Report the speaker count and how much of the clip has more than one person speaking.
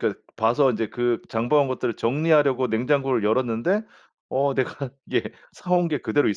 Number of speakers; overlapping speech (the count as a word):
one, no overlap